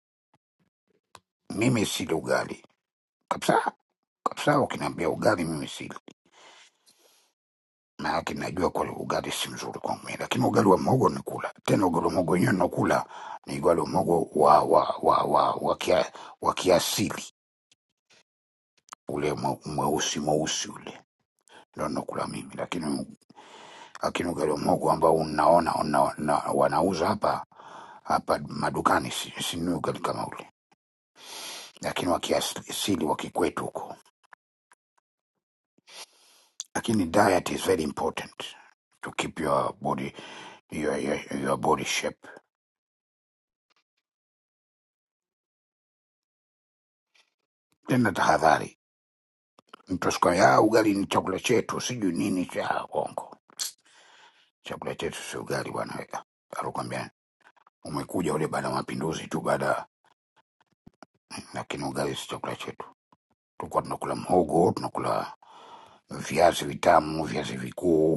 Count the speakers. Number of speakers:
1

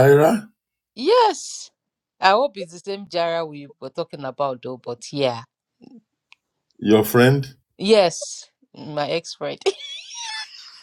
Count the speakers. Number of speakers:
2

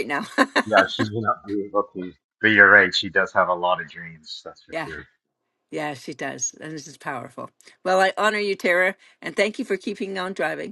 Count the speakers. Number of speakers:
2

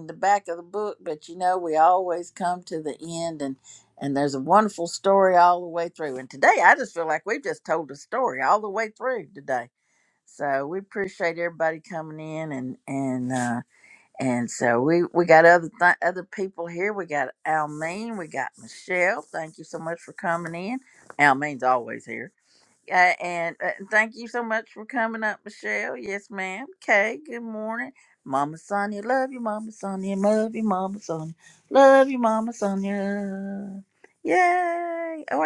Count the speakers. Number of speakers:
1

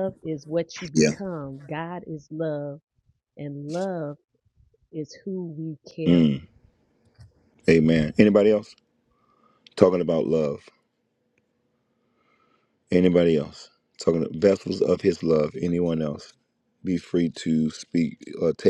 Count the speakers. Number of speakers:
2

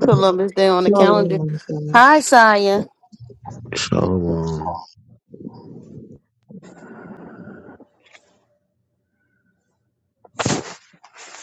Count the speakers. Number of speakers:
3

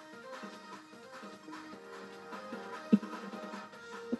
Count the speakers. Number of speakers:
0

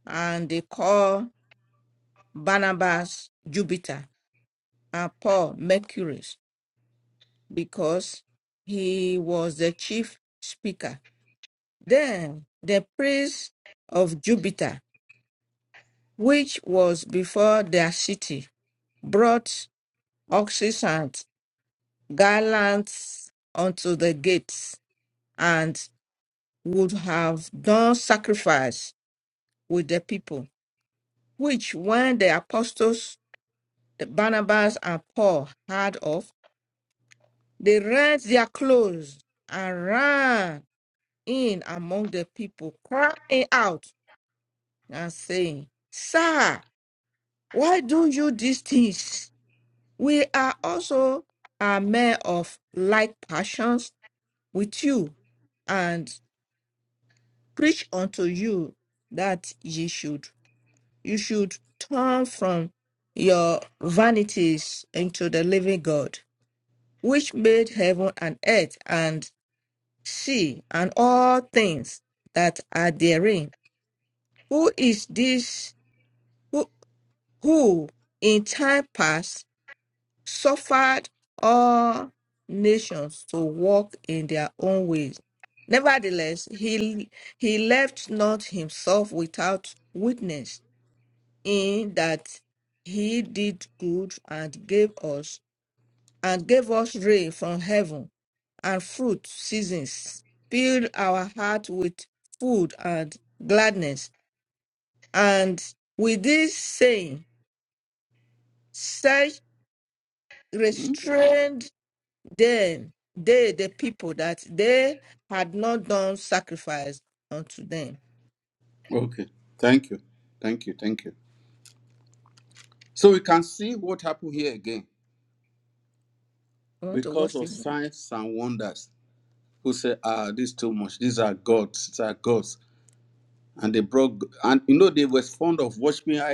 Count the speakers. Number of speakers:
2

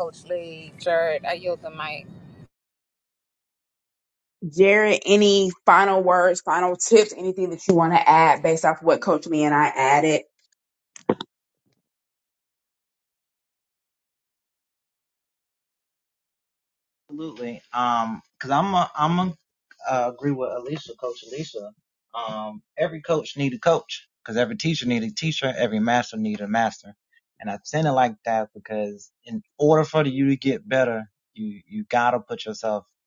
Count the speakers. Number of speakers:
3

